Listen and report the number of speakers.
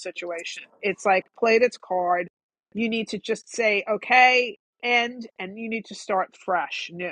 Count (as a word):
one